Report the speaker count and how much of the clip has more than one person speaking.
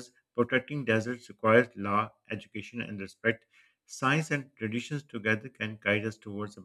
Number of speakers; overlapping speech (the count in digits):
1, no overlap